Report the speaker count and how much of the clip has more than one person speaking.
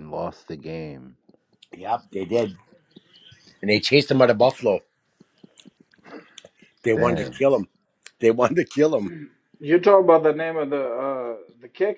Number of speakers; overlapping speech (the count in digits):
3, about 4%